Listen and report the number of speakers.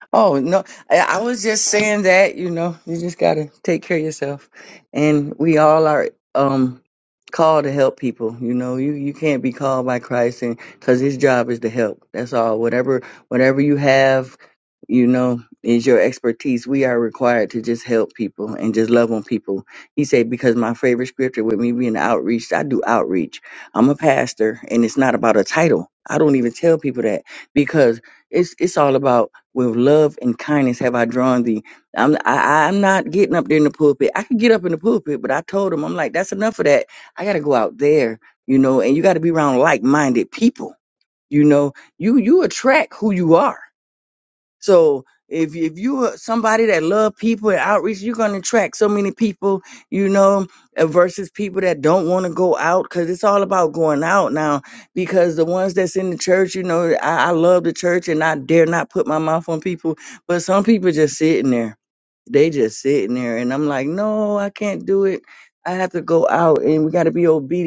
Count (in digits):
1